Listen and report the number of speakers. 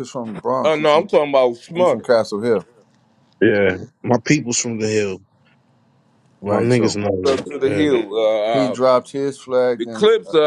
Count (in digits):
3